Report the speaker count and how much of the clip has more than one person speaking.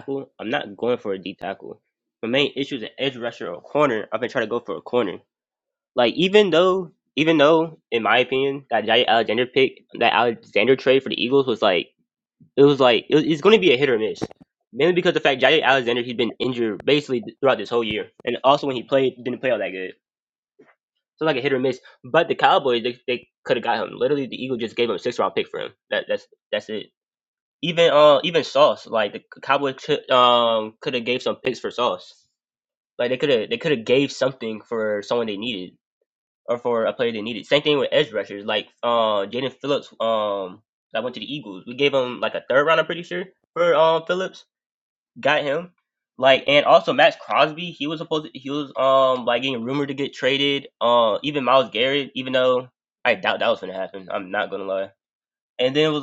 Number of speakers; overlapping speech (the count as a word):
one, no overlap